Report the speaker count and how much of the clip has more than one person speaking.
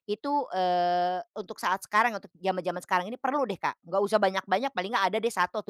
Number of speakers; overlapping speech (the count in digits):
1, no overlap